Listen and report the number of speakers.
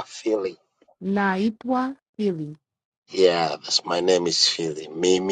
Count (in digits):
2